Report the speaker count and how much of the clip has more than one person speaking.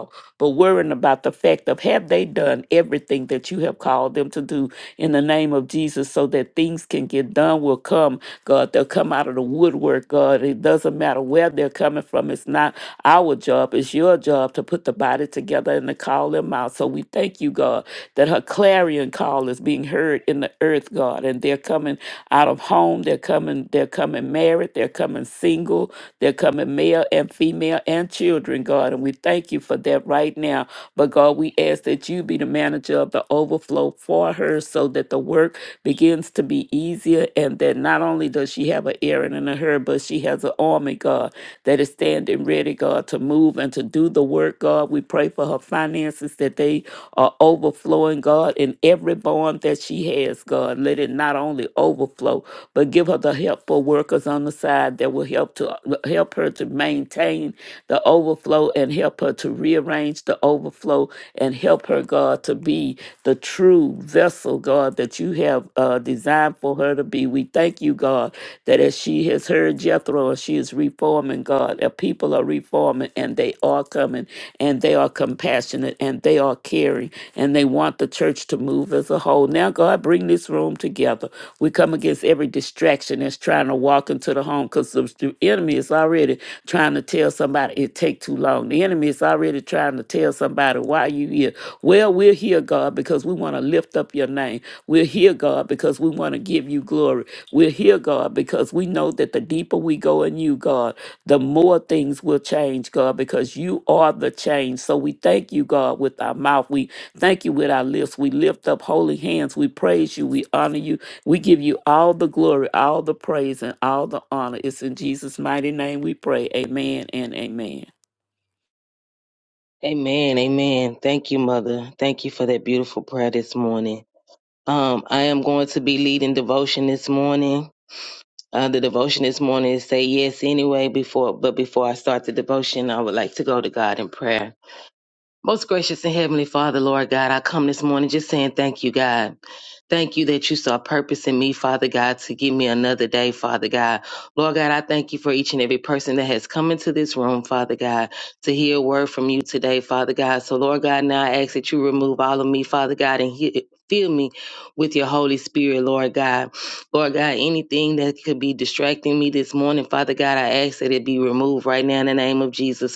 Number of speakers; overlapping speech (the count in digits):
2, no overlap